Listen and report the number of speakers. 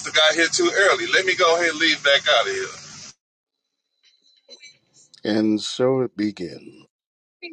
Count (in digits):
2